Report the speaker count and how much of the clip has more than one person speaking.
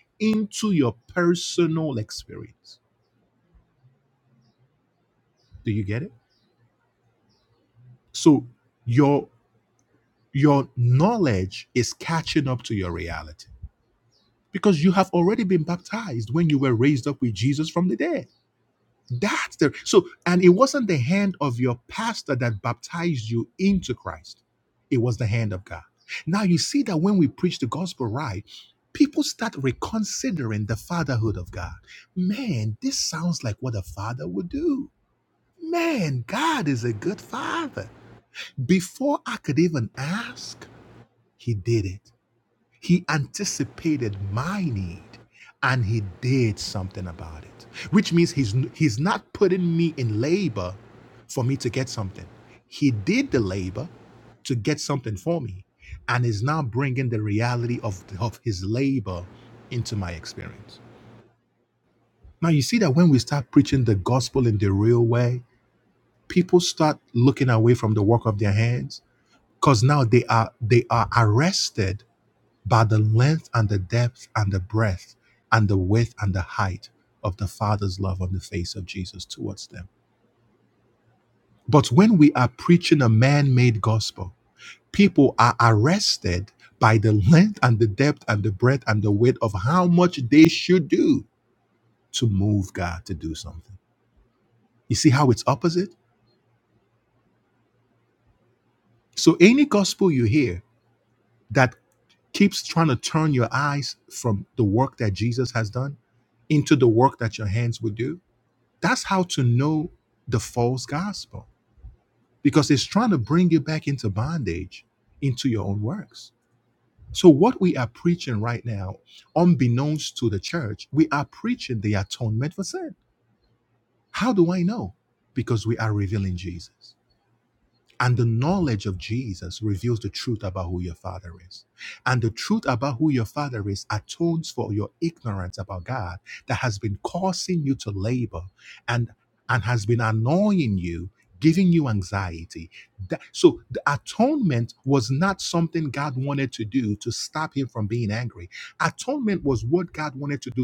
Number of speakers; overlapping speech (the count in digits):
1, no overlap